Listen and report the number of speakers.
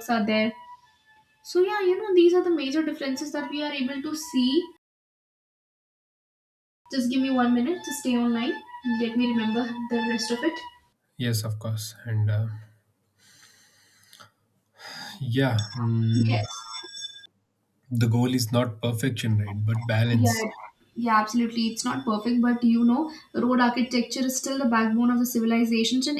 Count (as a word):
two